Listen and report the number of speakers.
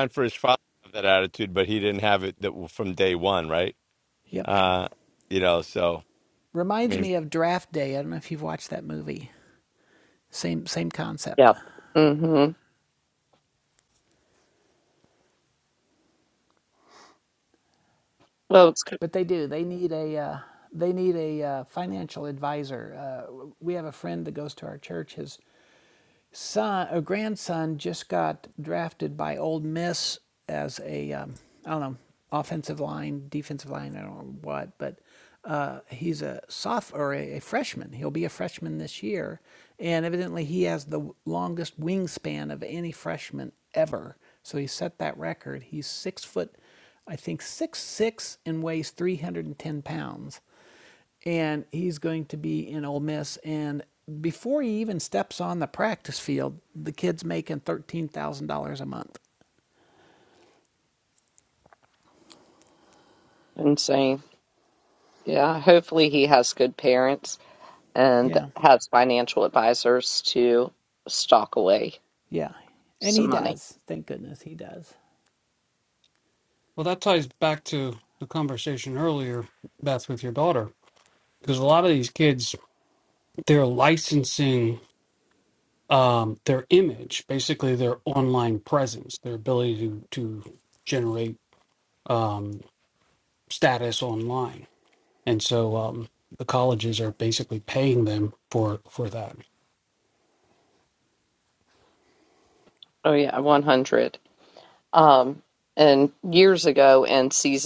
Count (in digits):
4